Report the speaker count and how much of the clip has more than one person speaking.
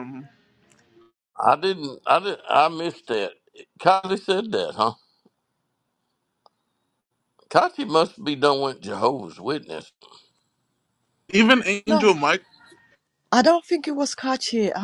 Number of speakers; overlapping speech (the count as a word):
three, about 2%